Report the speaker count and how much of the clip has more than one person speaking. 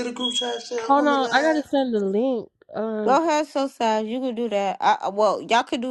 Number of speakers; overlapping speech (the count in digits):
3, about 15%